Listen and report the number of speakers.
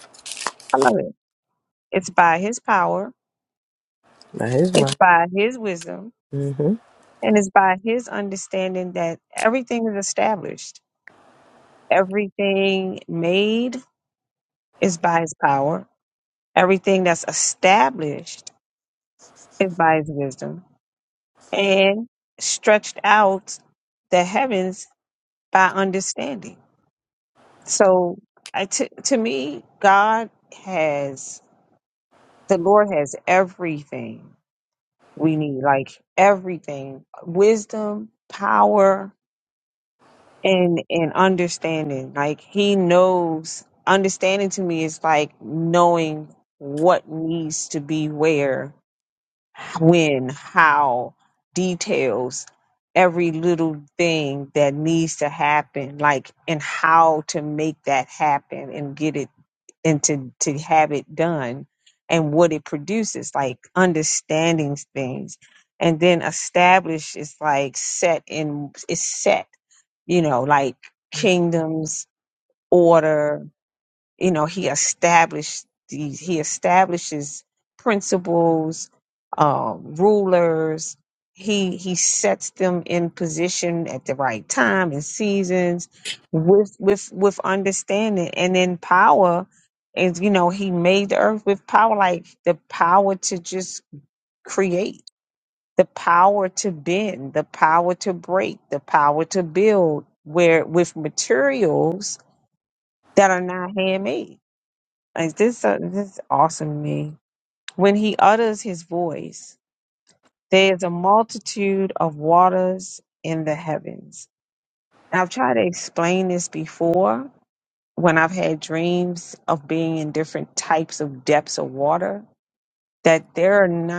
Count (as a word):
two